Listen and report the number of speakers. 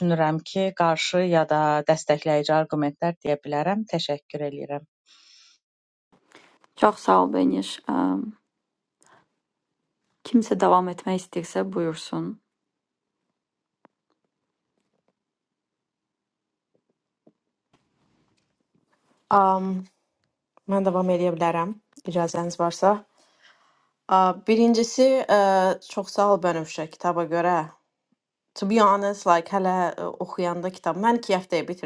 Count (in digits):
3